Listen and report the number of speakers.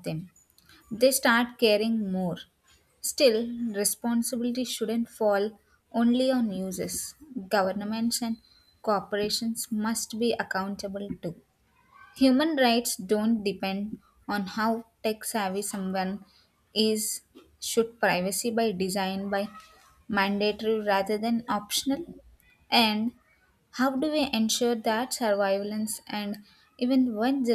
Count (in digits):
1